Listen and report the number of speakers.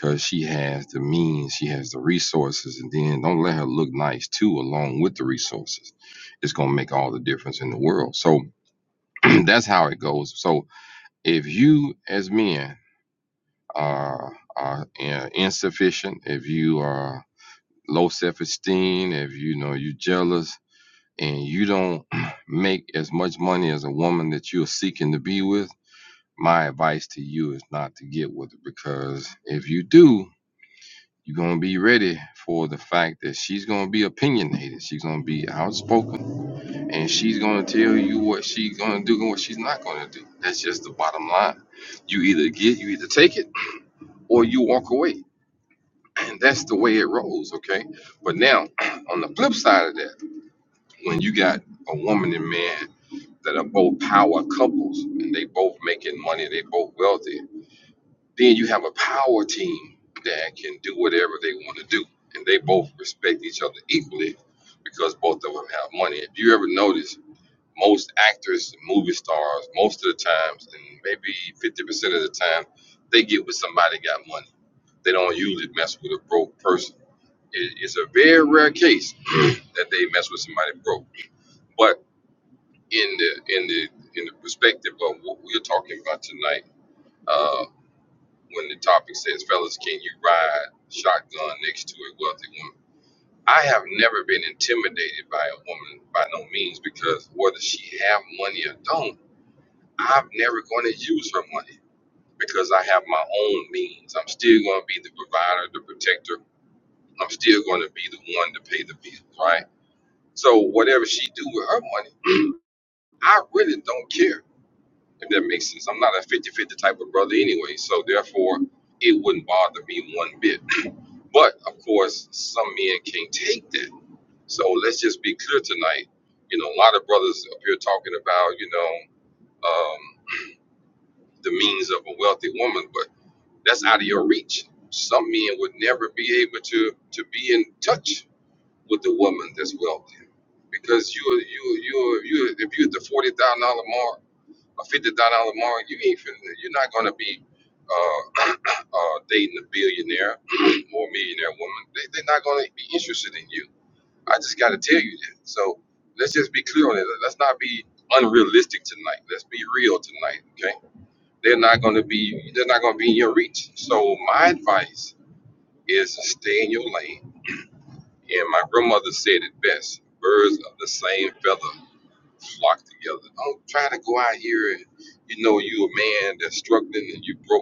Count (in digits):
1